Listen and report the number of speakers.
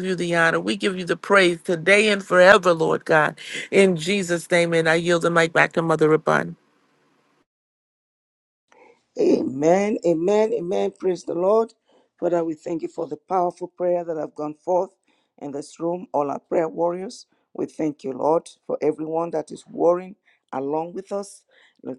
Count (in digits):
2